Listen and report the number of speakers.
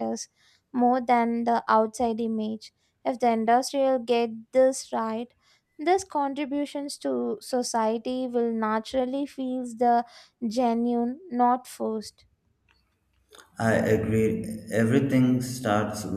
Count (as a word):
two